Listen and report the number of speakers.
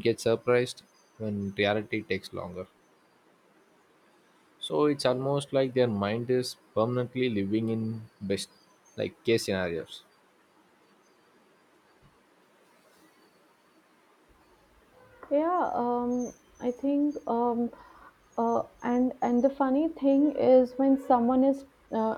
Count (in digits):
2